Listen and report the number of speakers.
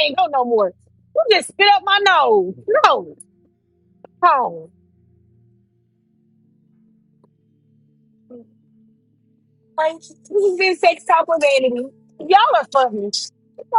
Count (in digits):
1